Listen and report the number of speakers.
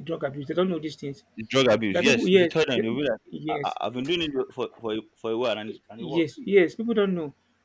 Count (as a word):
two